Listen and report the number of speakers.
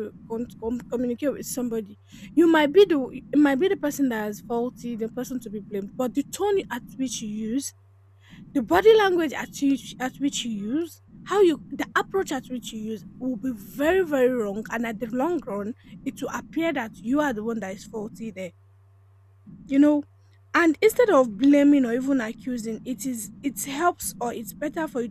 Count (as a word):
one